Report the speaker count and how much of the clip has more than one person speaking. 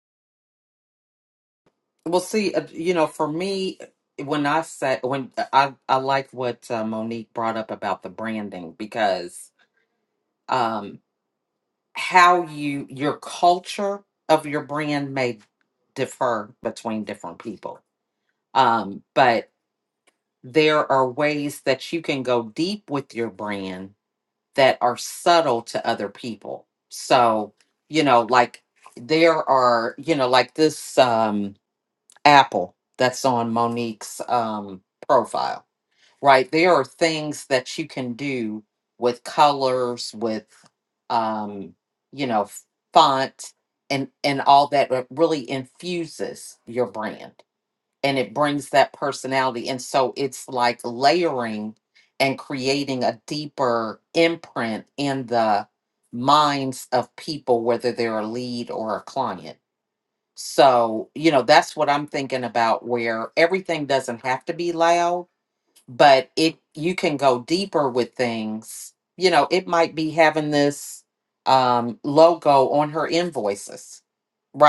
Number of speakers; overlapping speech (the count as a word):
one, no overlap